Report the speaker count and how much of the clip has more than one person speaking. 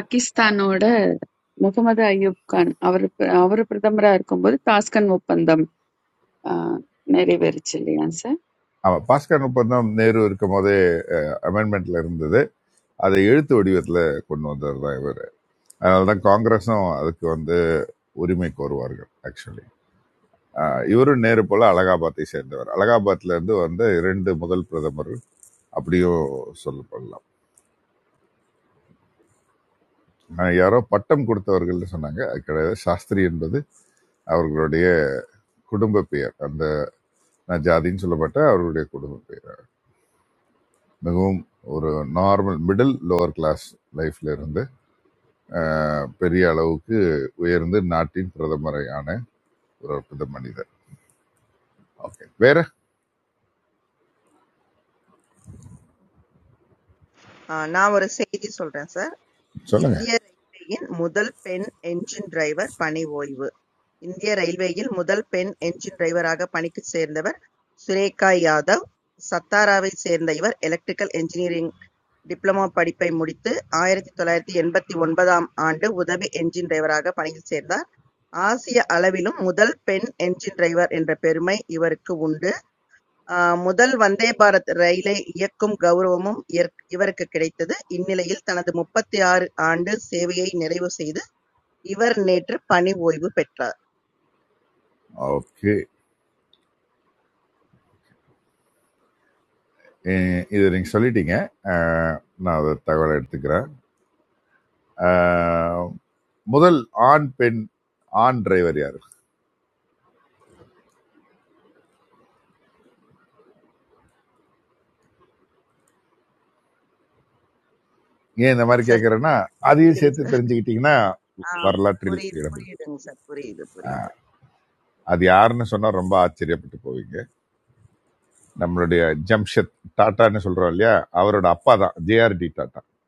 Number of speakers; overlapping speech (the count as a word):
three, about 1%